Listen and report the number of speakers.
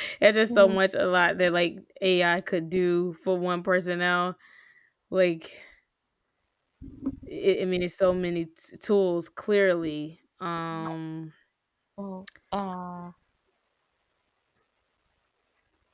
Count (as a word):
two